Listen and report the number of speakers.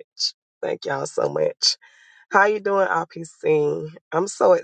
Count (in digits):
1